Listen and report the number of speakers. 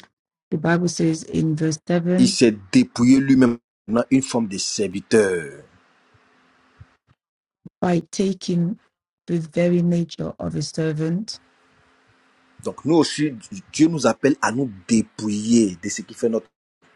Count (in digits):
2